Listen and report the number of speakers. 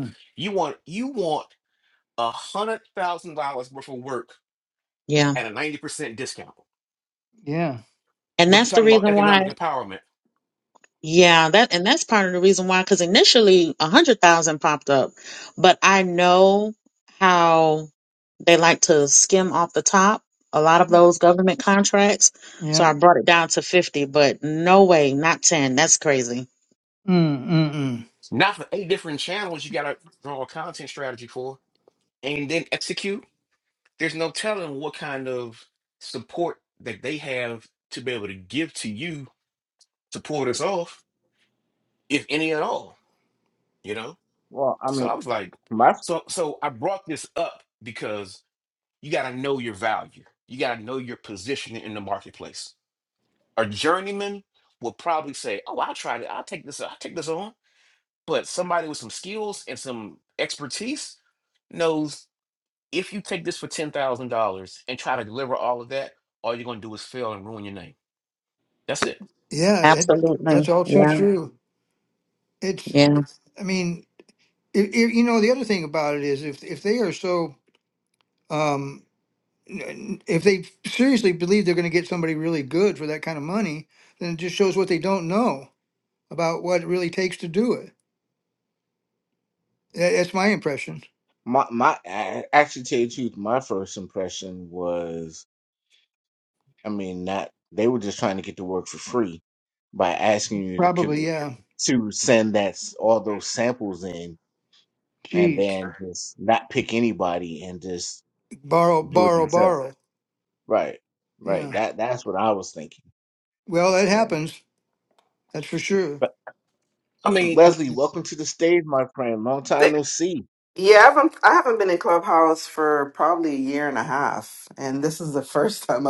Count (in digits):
5